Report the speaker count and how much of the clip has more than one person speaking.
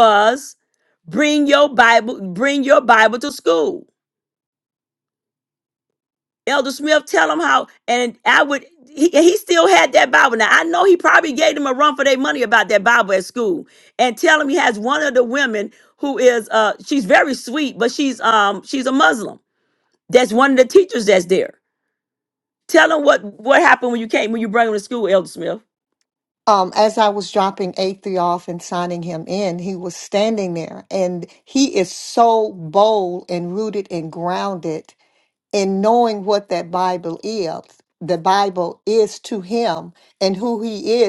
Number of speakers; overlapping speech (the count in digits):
2, no overlap